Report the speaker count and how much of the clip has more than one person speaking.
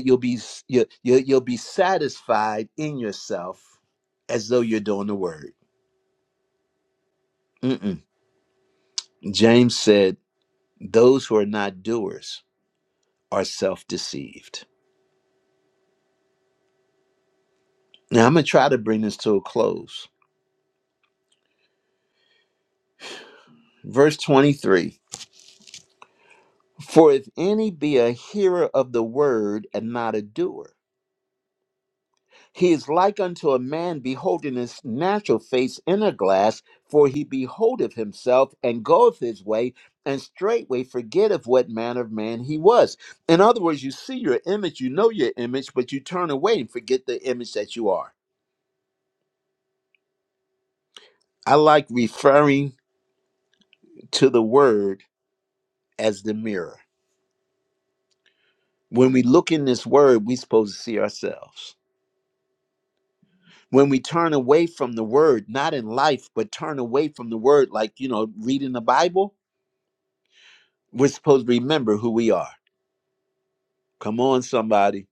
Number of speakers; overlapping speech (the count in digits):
1, no overlap